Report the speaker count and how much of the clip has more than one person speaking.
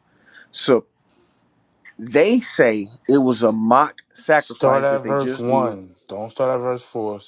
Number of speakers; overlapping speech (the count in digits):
2, about 18%